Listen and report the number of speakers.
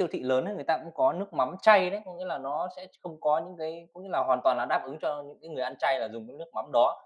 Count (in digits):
1